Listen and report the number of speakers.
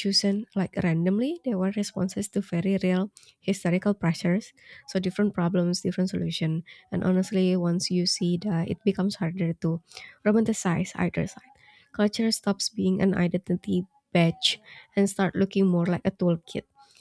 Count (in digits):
1